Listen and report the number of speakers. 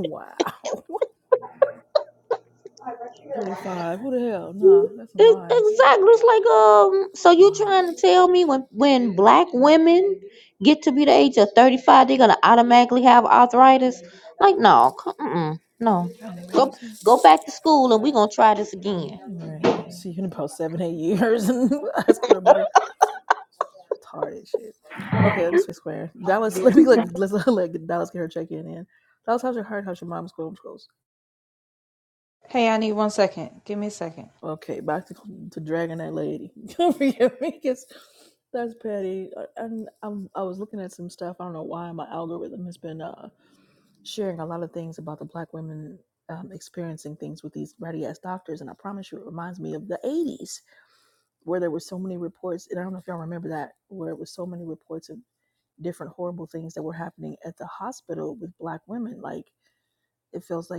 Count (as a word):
three